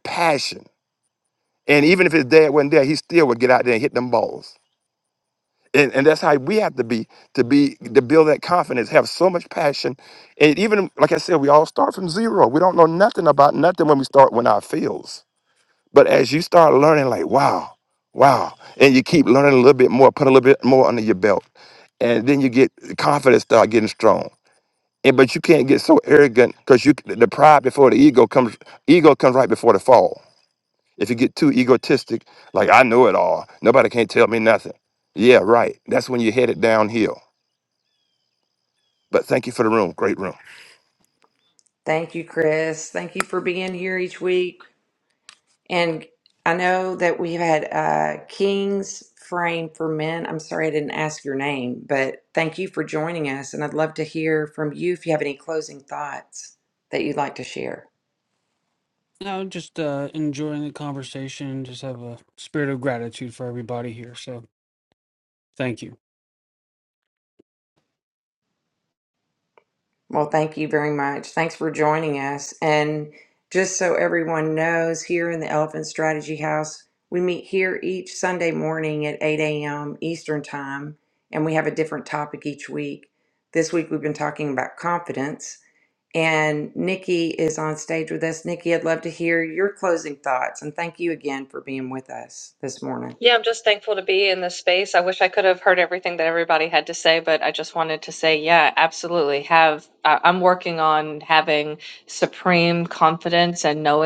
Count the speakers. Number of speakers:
4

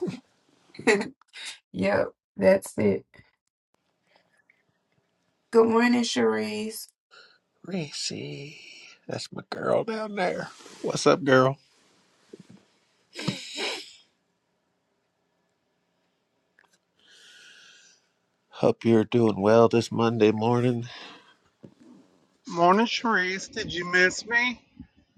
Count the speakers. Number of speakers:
3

